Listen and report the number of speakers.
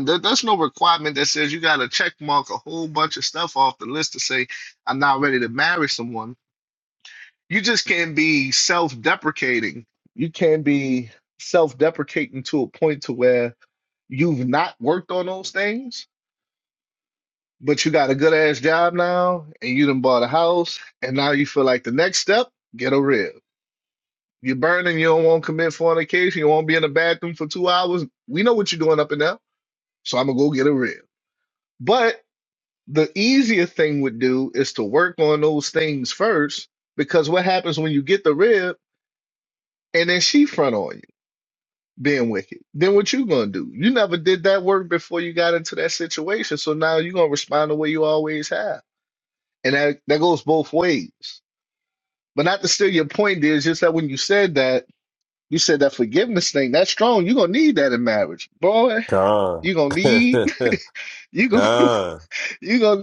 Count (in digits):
2